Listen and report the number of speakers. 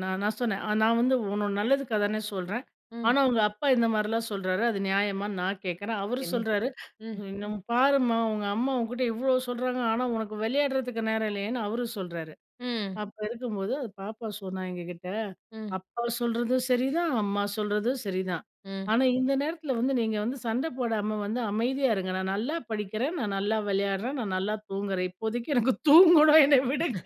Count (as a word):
two